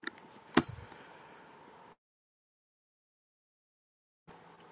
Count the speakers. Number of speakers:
0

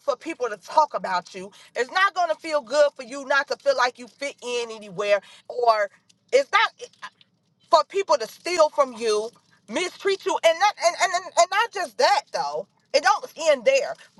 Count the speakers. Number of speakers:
1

